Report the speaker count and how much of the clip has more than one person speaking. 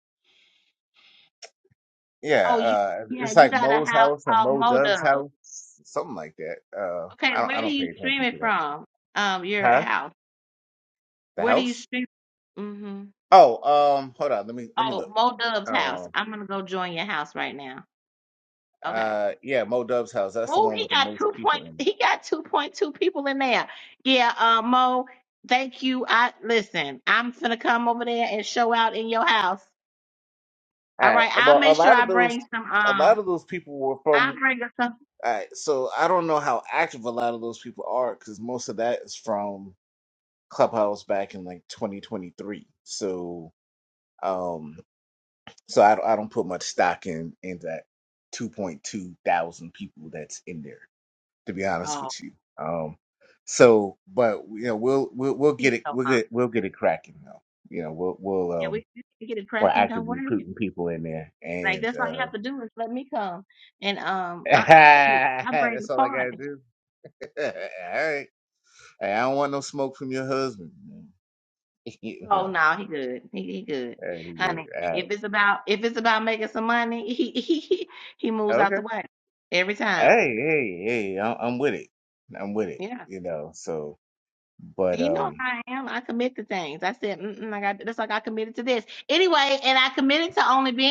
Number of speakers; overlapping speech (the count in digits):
2, about 16%